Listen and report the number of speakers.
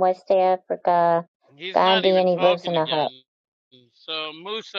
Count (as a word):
two